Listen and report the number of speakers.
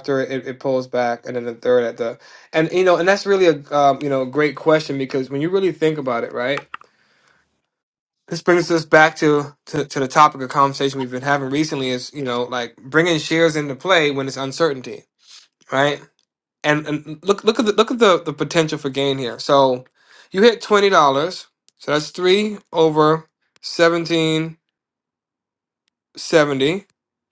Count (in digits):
1